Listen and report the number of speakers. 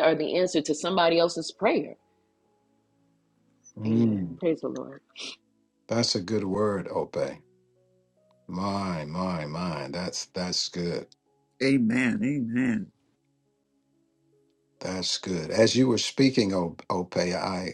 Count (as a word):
three